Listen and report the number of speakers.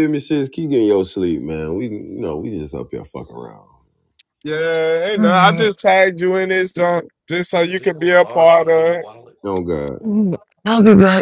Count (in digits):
3